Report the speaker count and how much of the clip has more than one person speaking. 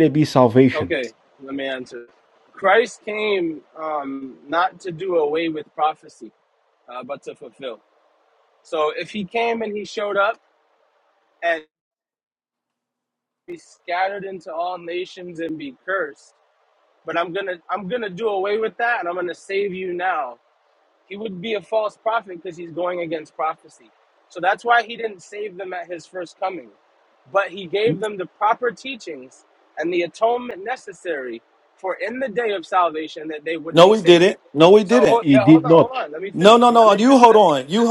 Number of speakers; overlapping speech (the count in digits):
3, about 8%